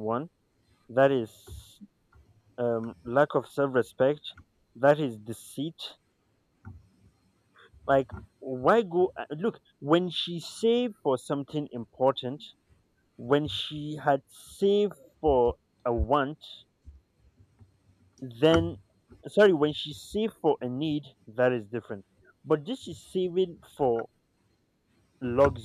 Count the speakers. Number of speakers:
one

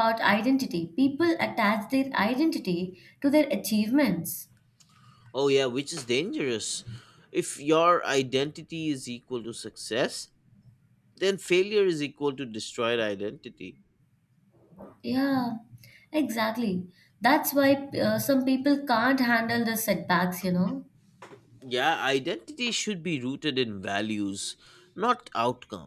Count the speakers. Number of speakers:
two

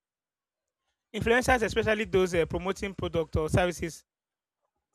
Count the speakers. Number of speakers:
one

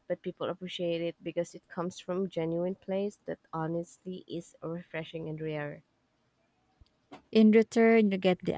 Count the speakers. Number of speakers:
two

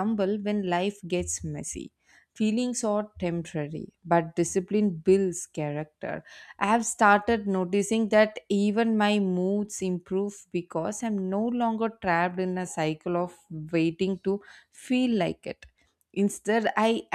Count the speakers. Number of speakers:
one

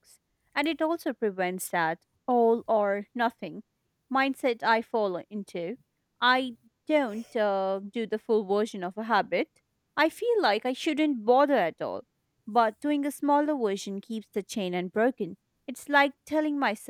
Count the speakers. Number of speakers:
one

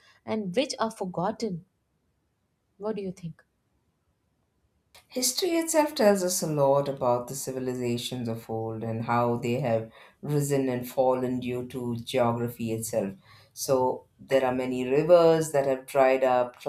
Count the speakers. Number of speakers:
two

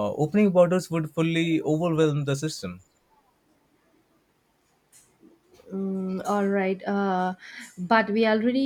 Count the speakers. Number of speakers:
two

